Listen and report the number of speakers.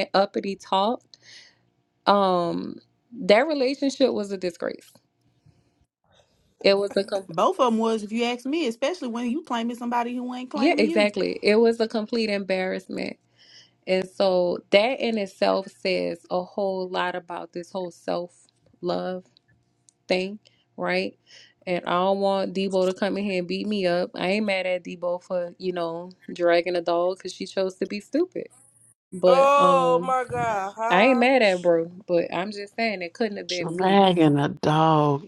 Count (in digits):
4